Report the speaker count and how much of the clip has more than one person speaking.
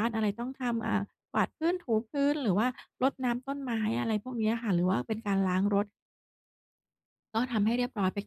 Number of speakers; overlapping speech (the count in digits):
1, no overlap